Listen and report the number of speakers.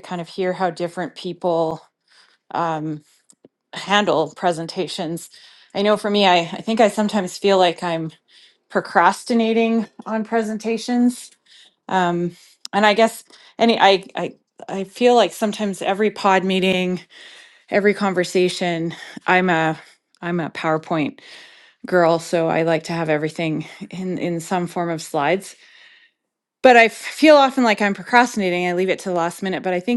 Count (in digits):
1